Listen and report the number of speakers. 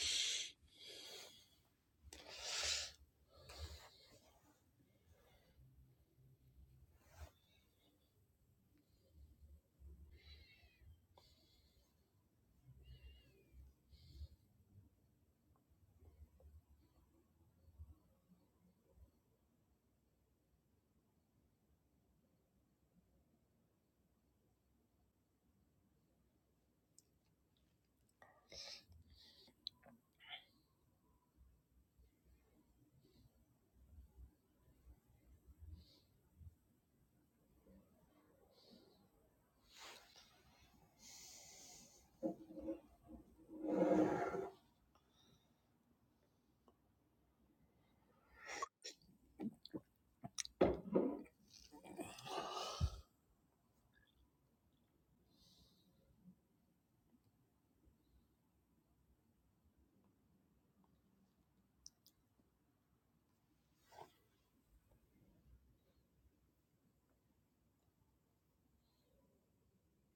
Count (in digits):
0